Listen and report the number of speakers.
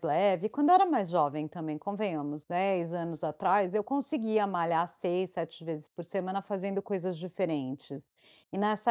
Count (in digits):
1